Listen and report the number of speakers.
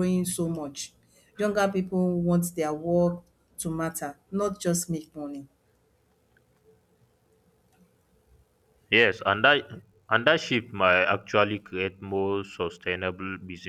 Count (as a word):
two